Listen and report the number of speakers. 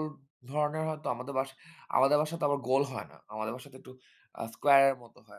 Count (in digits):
1